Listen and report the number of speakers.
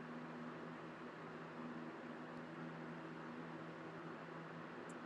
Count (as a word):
zero